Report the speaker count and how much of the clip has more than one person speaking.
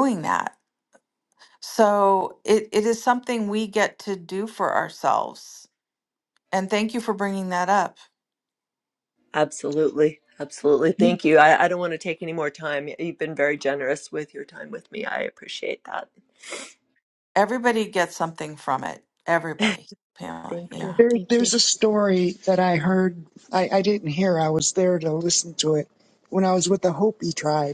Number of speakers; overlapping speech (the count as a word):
three, about 4%